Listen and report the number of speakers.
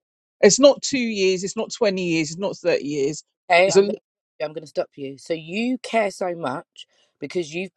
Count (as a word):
two